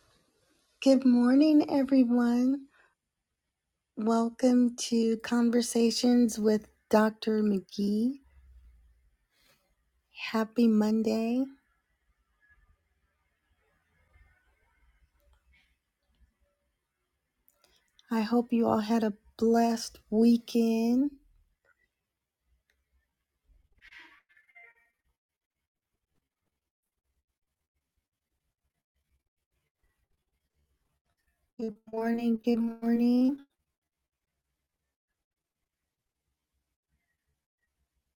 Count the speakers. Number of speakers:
one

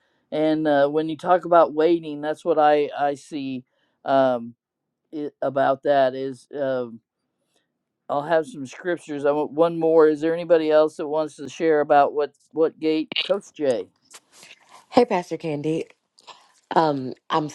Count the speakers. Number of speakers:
two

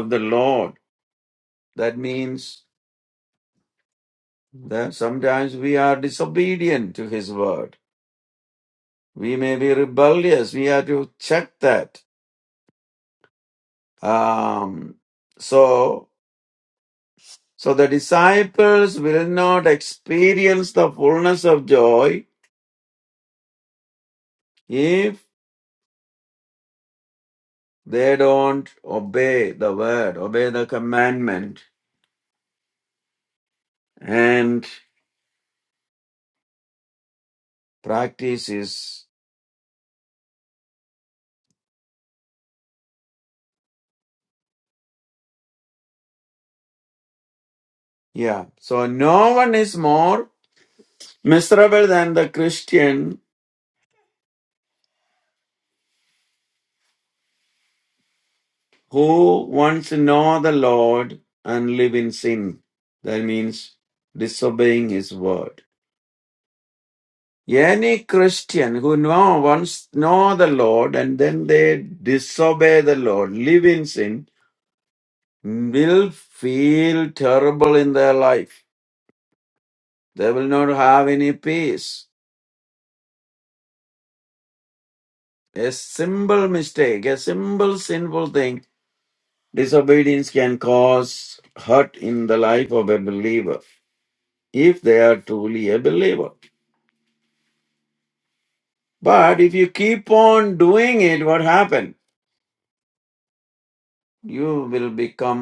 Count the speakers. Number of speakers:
one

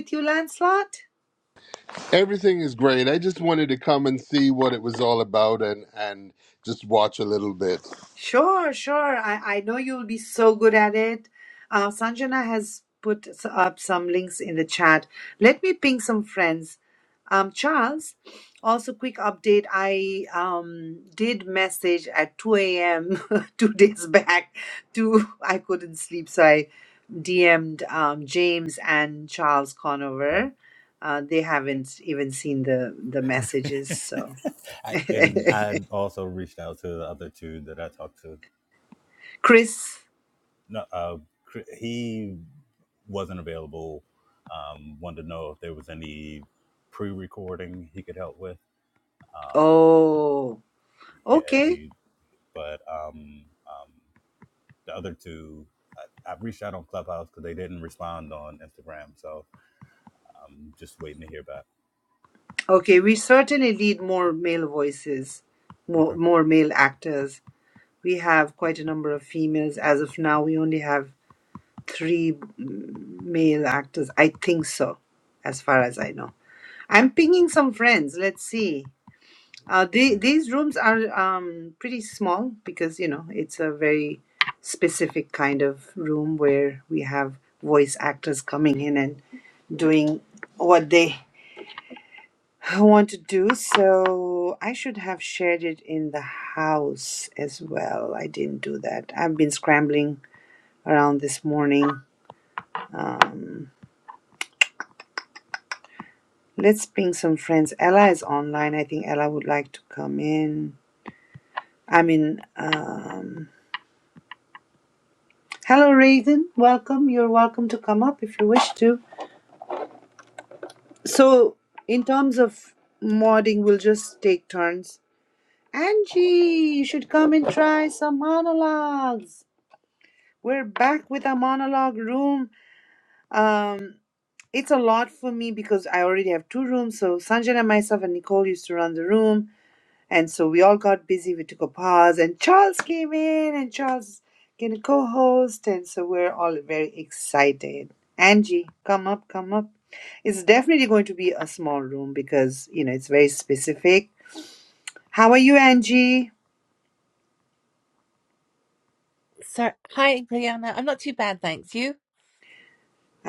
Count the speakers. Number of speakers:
four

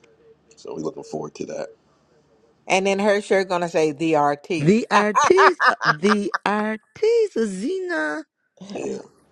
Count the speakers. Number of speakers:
three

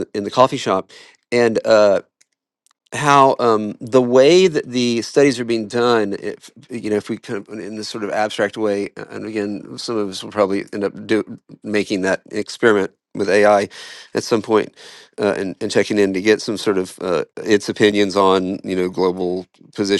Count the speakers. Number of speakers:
one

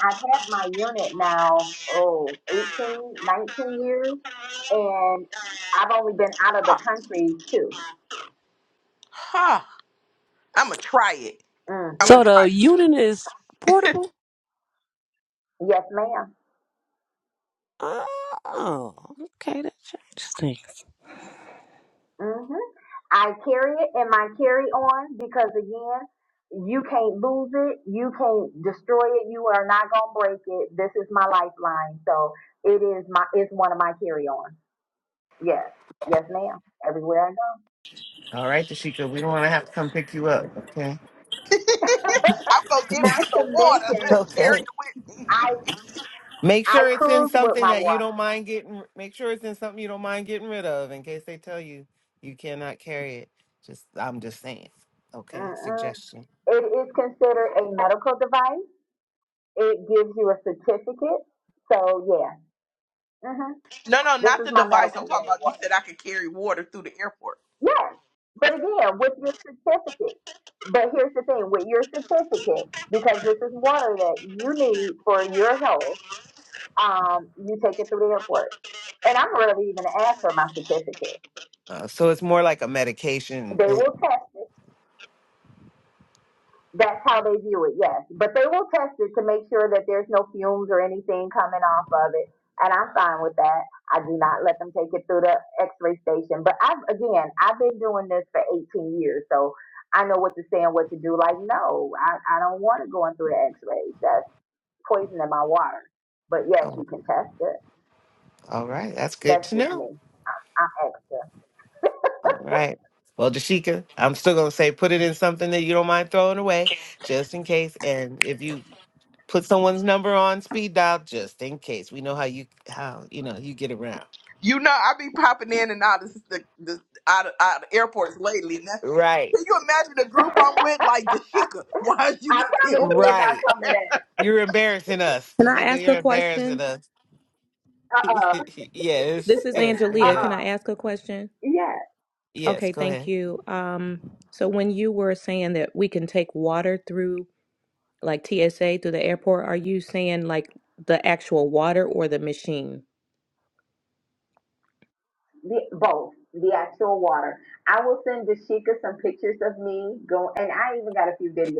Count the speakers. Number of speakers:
five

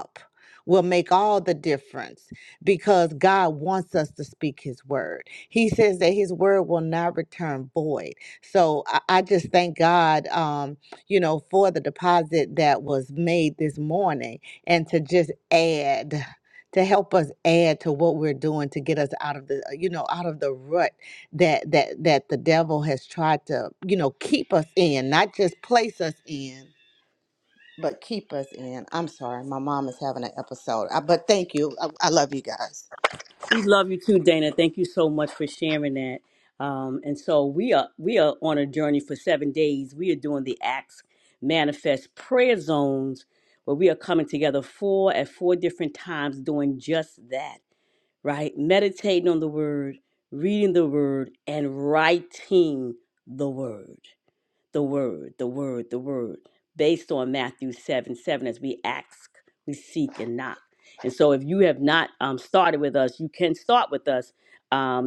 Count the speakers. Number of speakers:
two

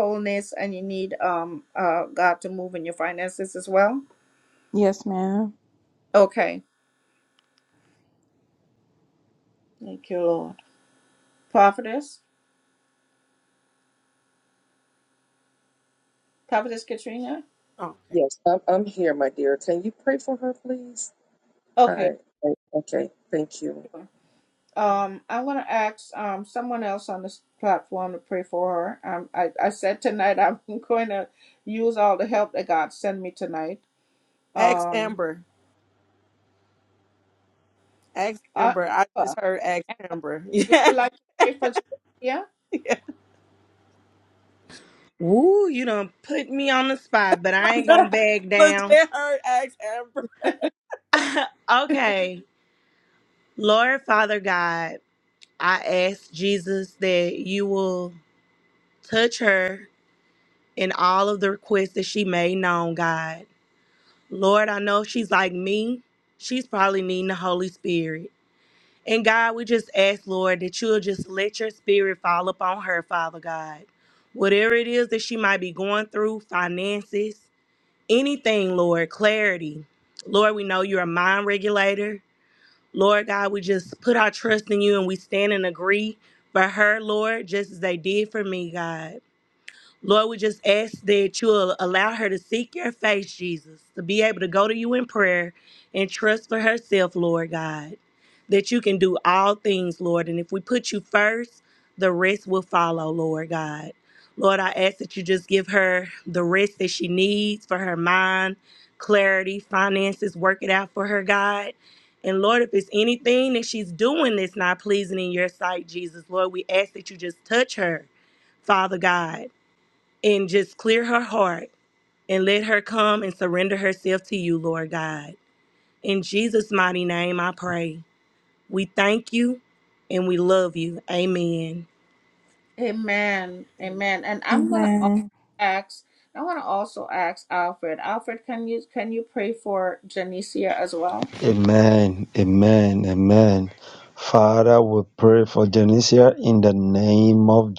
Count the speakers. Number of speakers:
six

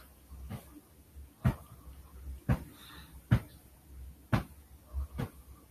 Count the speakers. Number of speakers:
zero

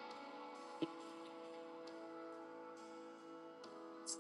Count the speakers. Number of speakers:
zero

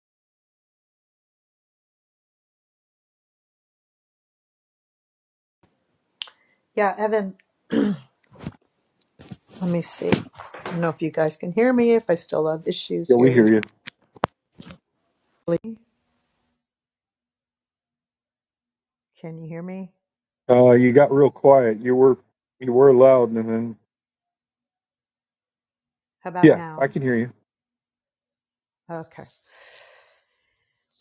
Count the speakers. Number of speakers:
two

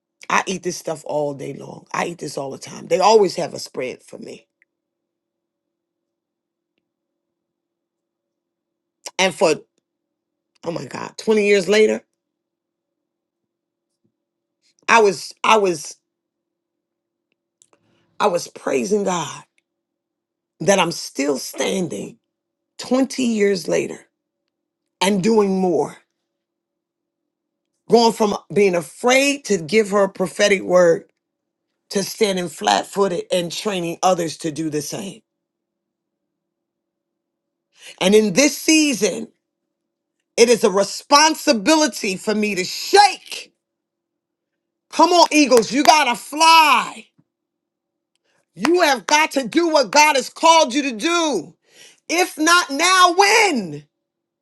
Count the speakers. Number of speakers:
one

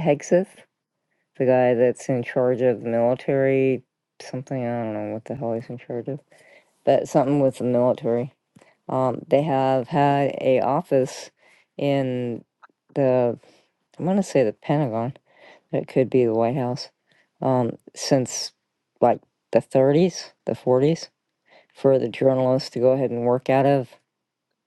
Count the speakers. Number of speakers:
one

